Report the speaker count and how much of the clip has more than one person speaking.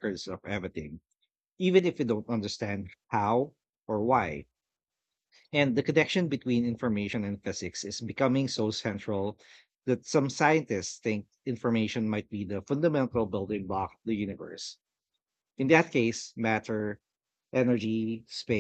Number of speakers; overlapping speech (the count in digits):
1, no overlap